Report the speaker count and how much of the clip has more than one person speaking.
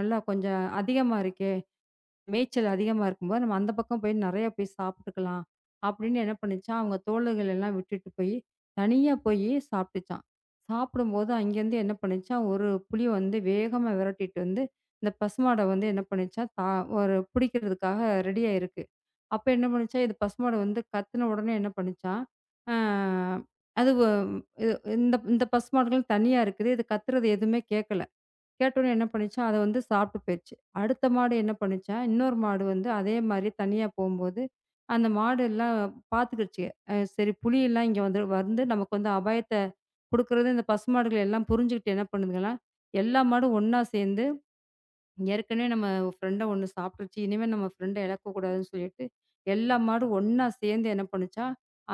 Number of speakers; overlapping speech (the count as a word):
one, no overlap